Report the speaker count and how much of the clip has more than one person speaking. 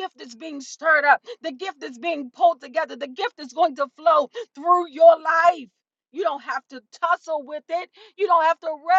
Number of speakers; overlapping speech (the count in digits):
1, no overlap